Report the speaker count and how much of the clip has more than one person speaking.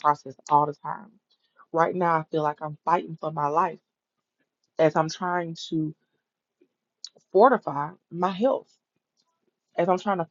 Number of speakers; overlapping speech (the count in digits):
1, no overlap